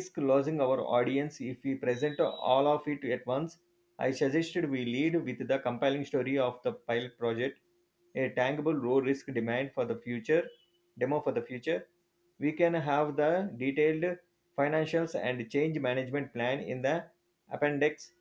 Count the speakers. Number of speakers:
1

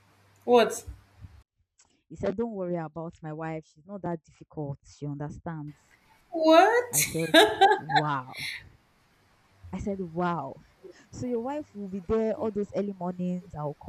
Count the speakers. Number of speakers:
2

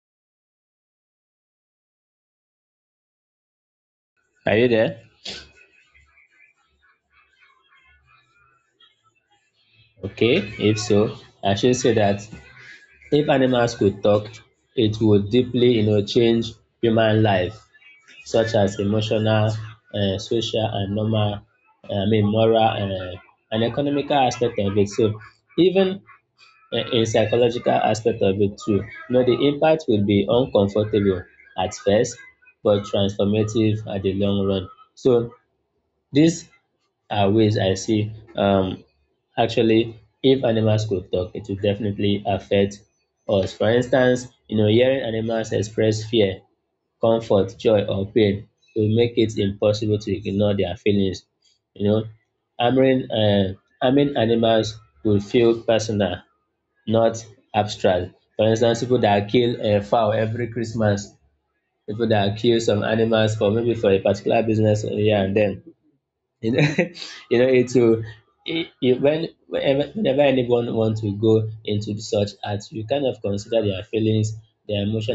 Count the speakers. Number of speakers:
1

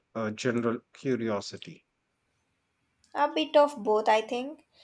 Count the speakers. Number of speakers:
2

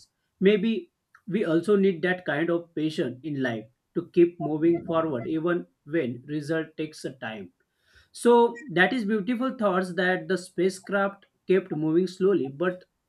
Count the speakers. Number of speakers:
1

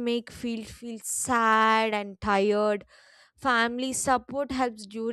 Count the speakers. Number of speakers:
1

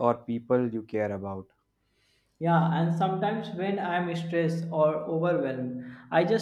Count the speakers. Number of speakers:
2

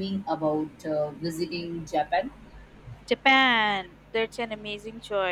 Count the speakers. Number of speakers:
2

